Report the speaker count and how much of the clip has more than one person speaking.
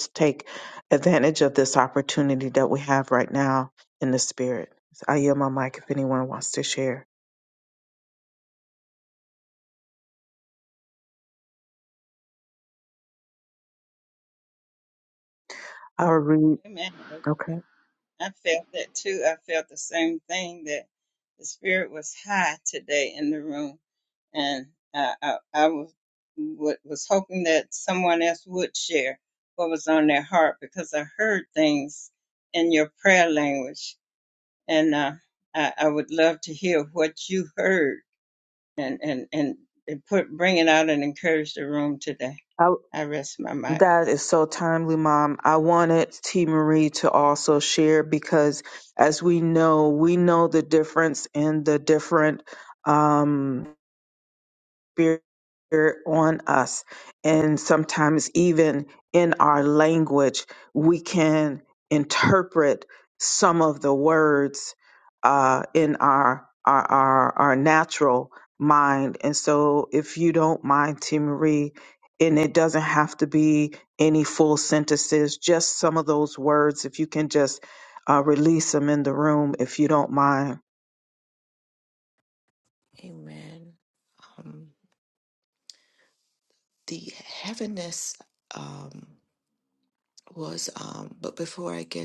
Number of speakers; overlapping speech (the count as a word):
three, under 1%